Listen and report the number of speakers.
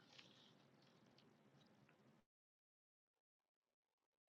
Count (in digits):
0